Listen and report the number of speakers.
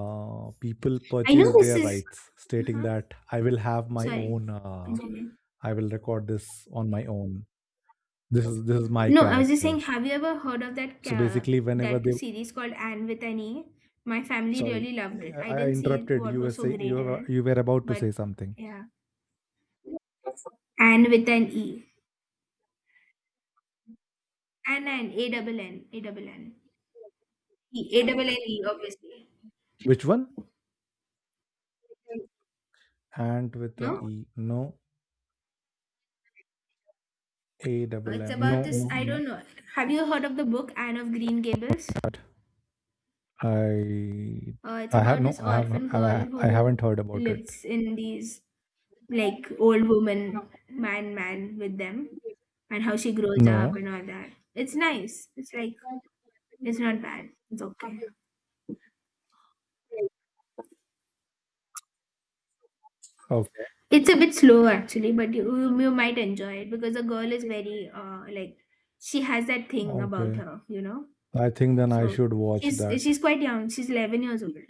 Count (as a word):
two